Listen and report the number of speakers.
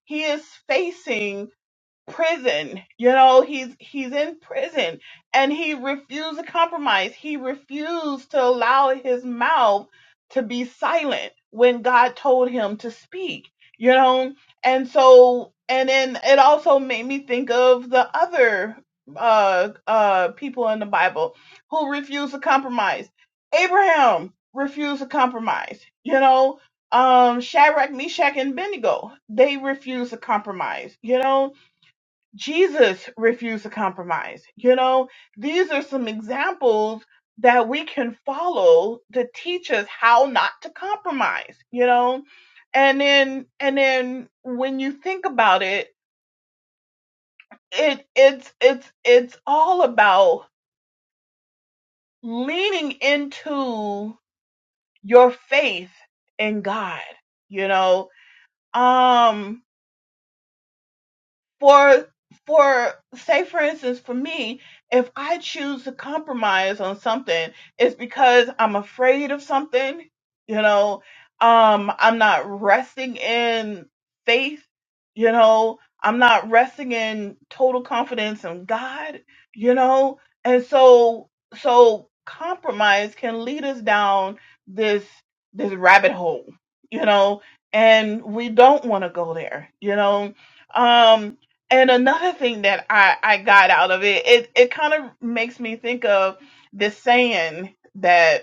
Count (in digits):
1